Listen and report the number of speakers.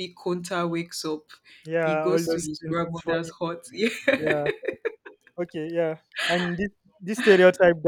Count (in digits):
2